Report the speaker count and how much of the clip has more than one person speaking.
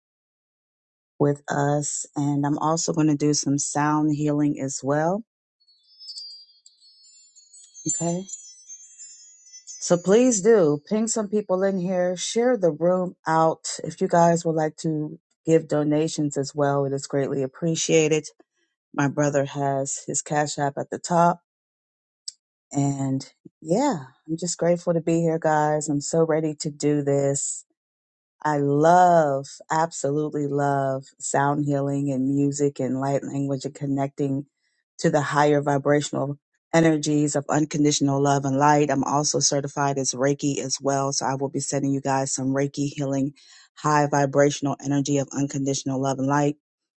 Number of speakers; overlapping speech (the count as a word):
one, no overlap